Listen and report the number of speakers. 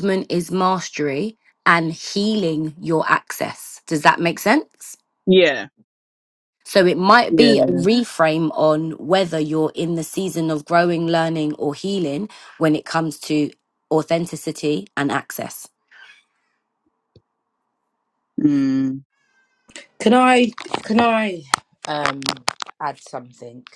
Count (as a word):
three